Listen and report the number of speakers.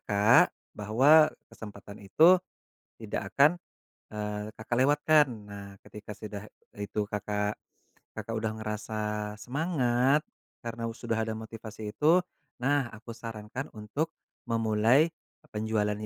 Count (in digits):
1